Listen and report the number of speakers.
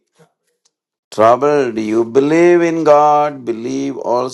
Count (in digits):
1